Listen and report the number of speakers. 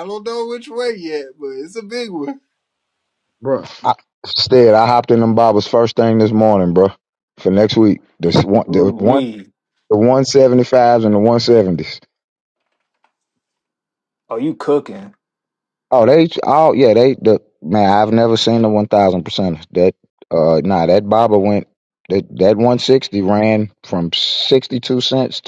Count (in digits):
3